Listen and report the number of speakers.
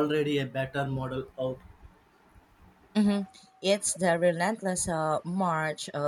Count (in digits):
2